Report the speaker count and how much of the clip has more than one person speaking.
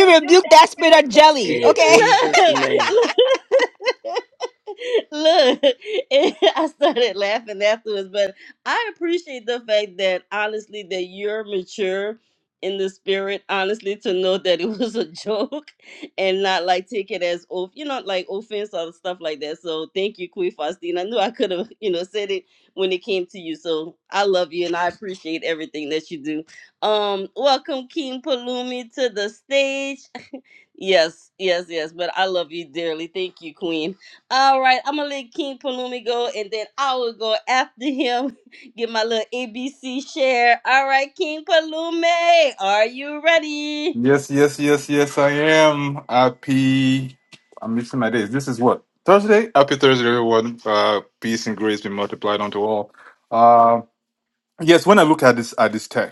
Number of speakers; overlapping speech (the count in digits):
4, about 2%